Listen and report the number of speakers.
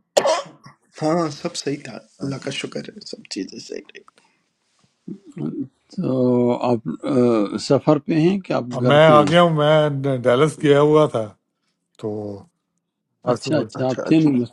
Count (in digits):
3